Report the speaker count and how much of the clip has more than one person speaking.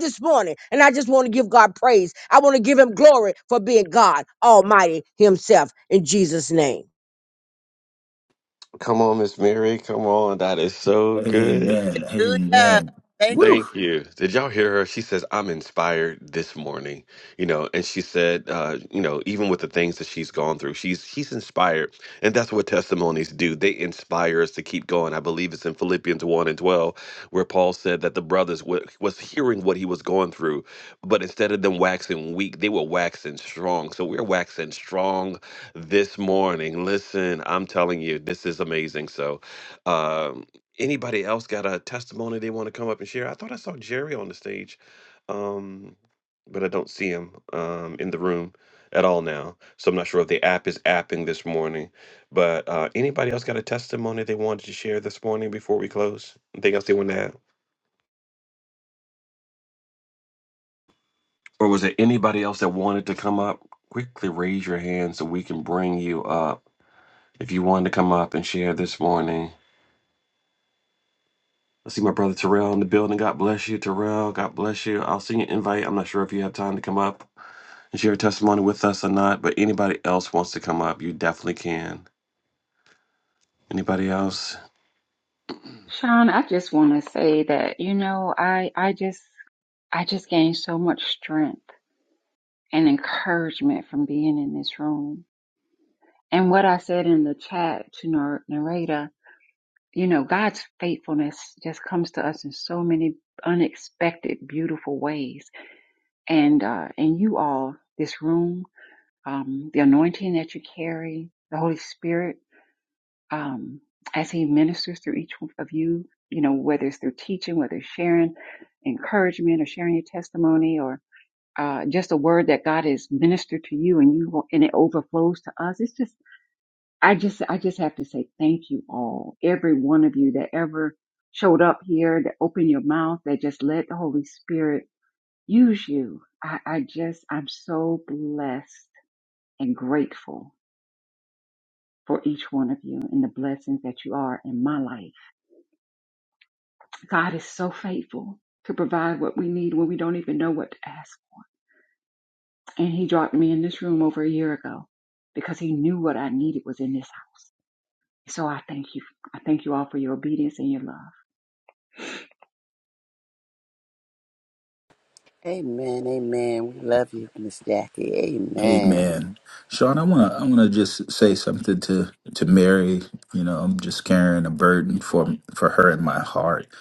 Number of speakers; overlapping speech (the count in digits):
5, about 1%